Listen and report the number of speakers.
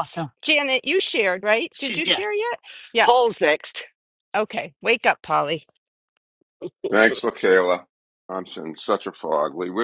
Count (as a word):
three